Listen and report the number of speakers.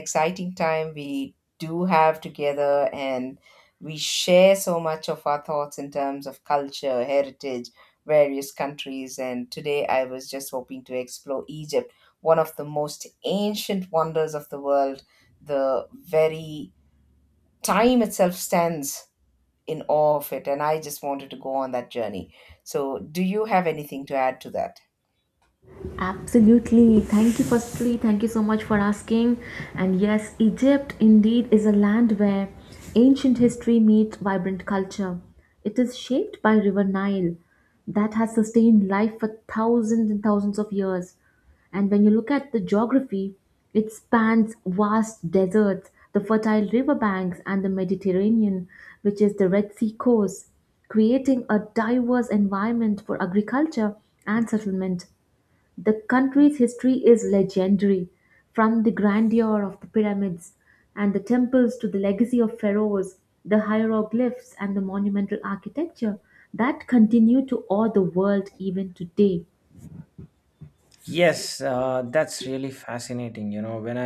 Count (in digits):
3